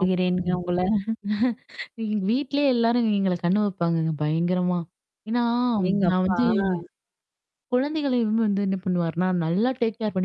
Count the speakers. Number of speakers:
two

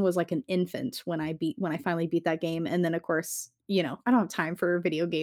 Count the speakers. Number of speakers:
one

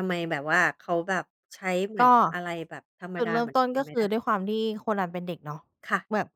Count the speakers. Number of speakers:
two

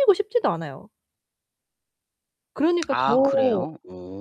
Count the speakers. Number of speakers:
two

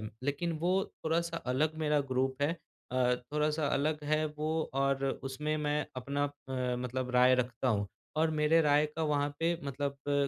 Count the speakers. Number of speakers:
one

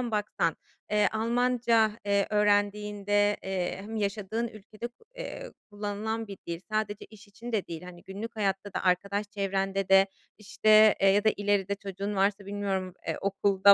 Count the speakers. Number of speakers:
one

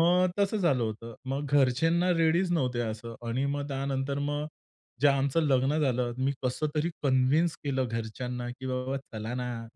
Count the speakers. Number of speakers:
one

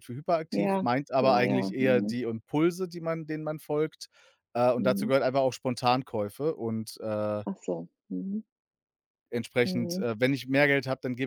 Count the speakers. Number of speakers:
two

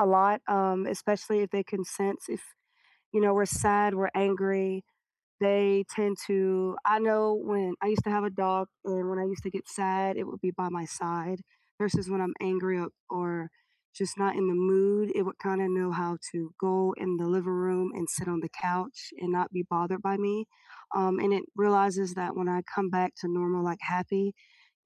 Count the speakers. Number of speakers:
one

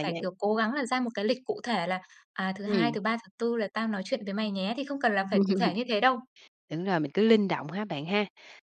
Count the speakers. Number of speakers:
two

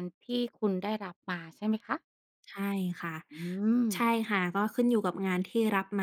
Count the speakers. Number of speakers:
two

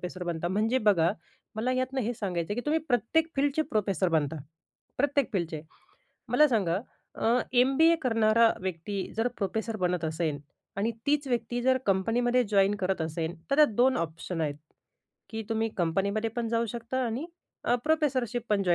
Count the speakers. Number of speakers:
one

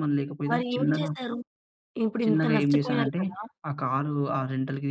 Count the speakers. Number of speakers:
two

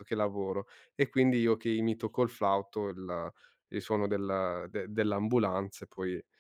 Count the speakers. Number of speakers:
one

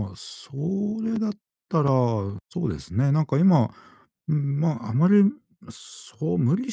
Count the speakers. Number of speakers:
one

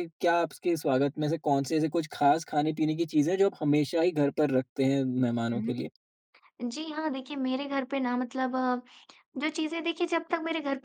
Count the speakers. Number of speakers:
two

